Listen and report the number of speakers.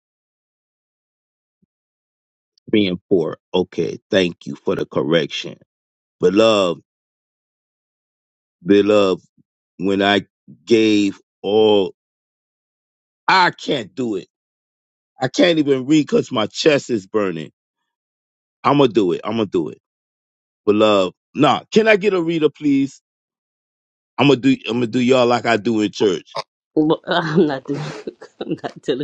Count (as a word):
two